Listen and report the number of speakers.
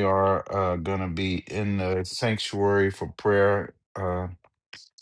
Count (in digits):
1